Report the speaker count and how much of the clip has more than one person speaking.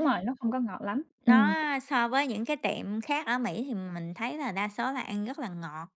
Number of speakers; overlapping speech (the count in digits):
2, about 5%